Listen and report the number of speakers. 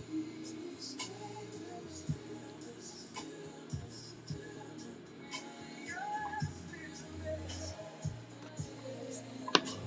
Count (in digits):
0